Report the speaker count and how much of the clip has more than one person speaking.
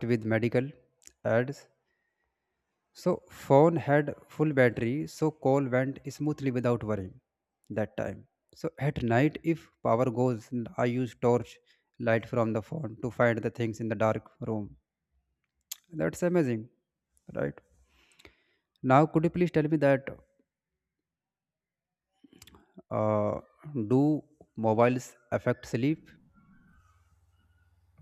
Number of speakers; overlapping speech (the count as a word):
one, no overlap